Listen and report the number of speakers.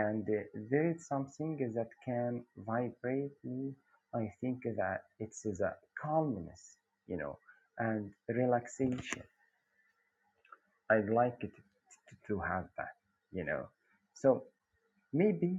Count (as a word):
one